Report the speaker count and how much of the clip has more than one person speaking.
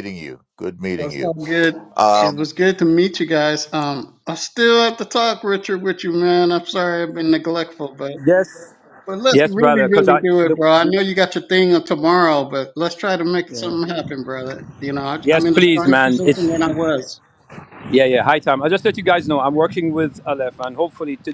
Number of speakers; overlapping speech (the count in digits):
3, about 17%